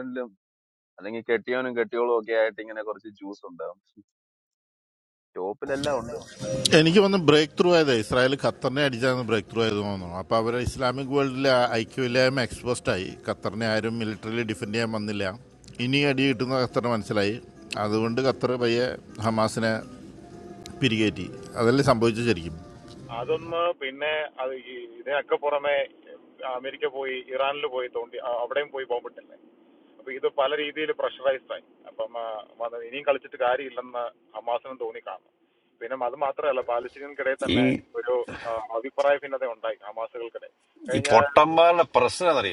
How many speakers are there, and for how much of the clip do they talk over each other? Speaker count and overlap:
four, about 1%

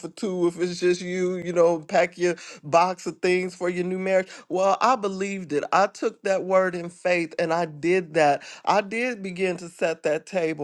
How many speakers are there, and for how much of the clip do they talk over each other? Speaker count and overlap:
one, no overlap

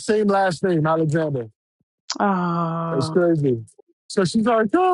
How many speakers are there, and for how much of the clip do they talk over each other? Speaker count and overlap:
two, about 5%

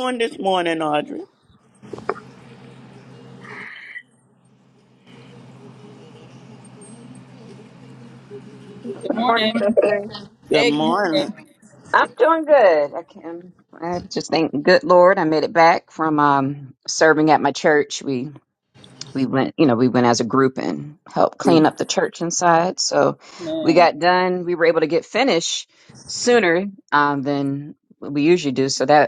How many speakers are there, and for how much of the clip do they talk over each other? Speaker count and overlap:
three, about 6%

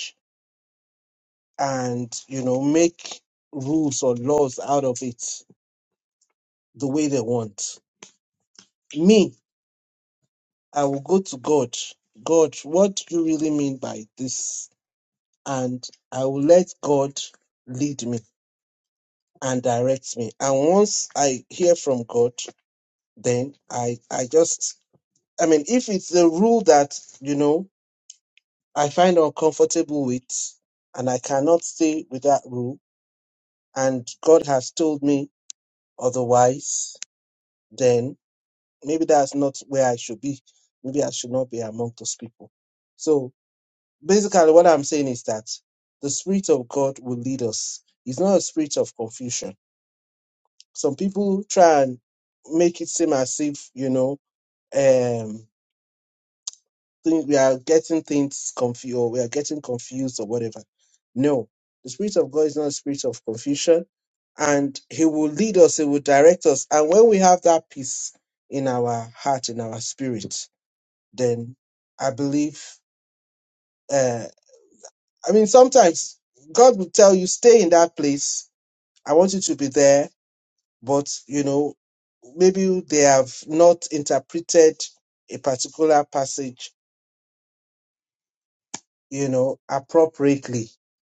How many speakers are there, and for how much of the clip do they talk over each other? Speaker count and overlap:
one, no overlap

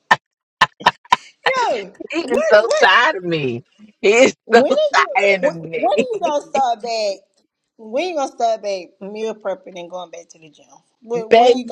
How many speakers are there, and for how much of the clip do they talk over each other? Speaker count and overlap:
two, about 18%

